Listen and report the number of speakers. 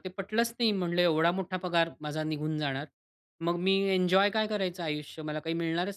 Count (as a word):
one